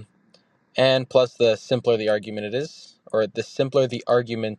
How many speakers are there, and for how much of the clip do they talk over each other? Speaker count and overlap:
1, no overlap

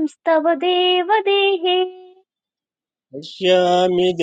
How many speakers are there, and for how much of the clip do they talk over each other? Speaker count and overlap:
2, no overlap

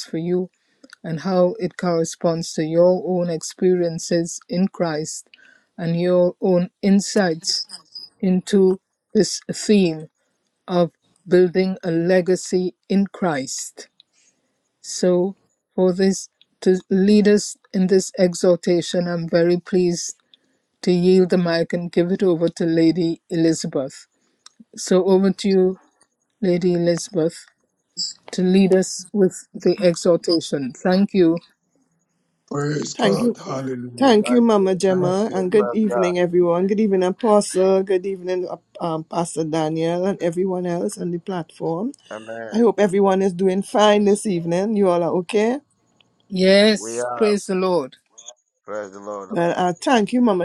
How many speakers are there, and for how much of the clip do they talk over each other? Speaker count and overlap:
4, about 6%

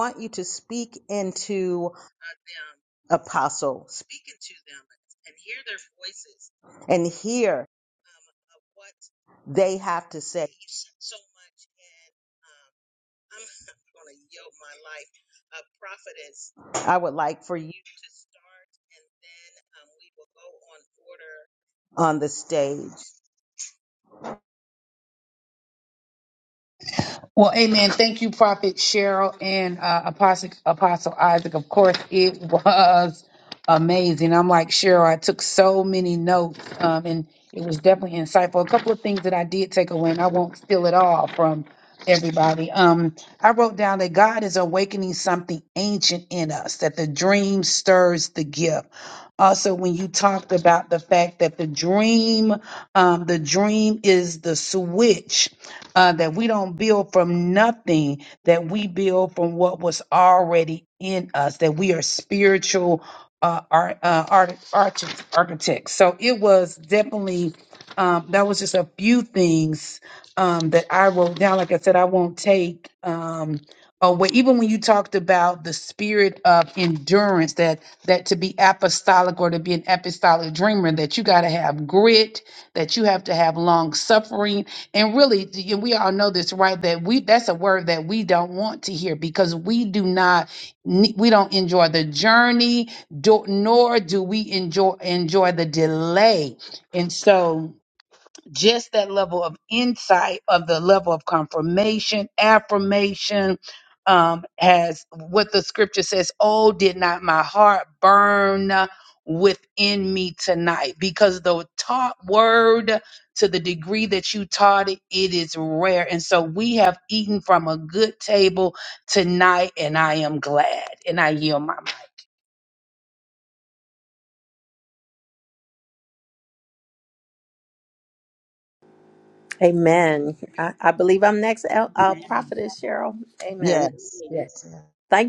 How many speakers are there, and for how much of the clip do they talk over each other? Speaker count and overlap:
3, under 1%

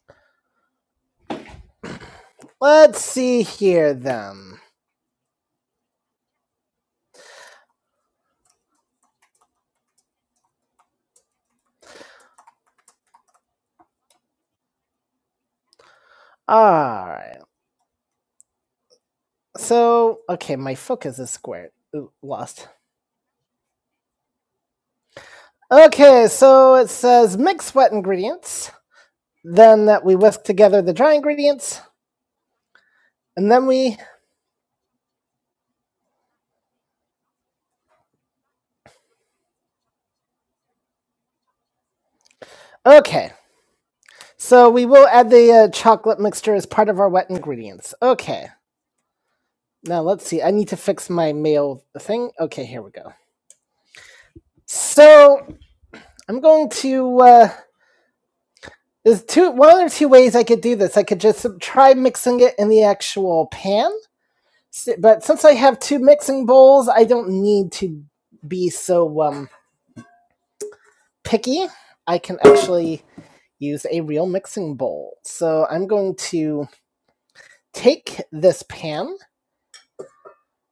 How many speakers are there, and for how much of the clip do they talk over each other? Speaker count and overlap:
1, no overlap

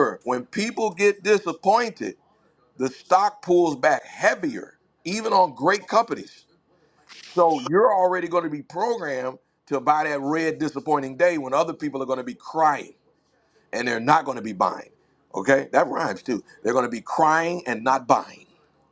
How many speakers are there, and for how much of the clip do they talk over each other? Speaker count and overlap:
1, no overlap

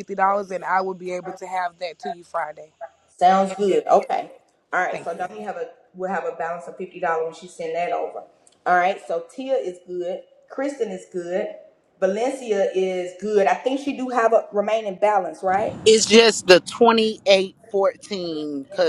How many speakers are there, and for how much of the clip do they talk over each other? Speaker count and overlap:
3, about 4%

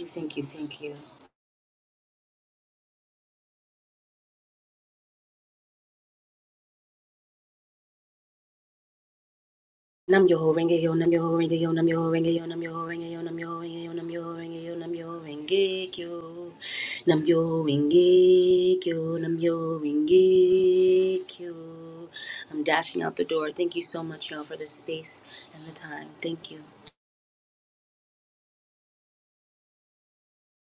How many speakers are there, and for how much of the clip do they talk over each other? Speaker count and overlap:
1, no overlap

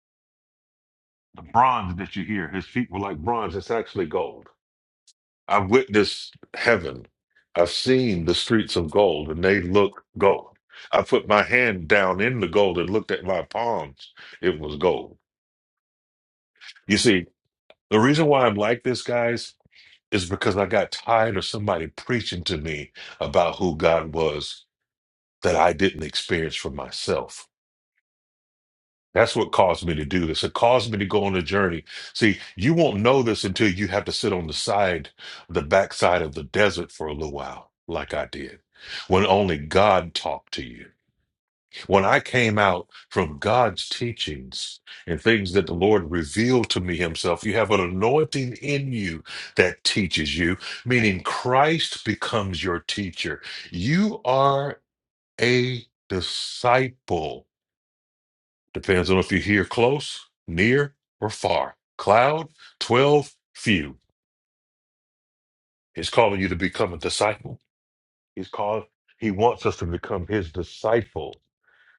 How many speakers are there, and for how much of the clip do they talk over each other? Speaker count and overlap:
1, no overlap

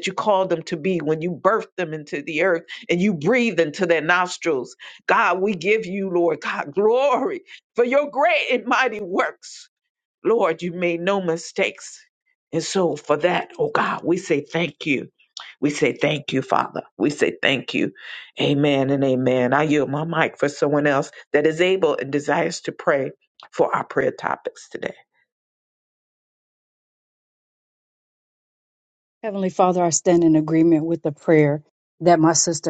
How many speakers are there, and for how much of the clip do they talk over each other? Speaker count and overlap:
2, no overlap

